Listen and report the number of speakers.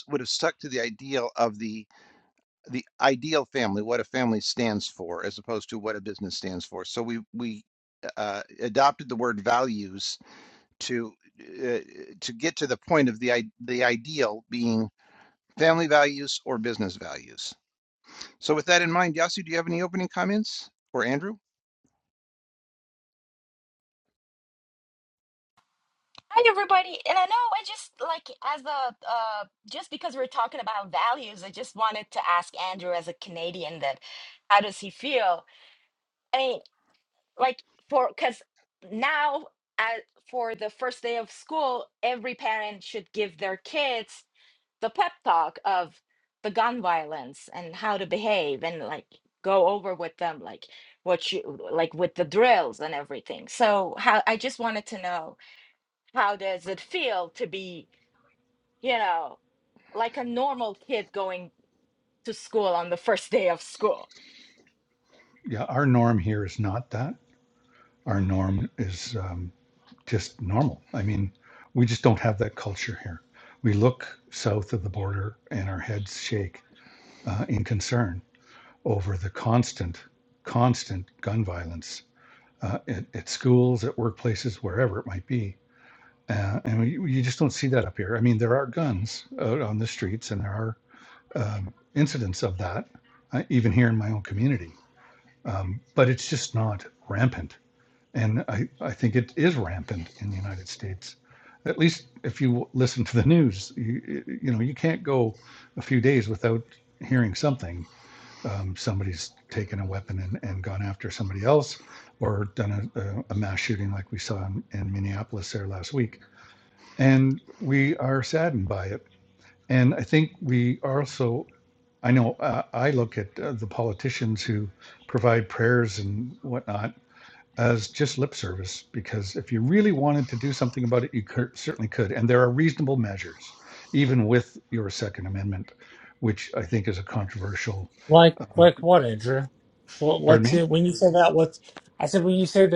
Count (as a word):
four